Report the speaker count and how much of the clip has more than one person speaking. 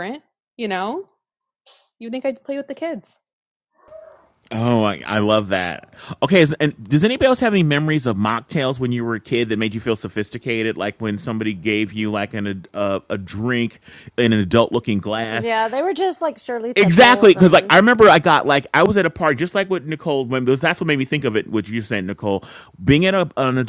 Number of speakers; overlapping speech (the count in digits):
3, about 5%